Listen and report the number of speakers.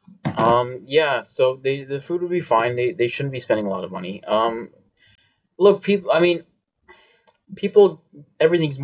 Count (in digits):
1